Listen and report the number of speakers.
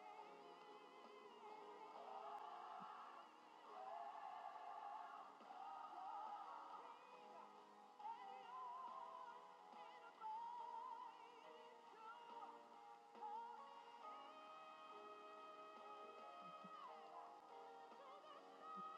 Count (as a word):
zero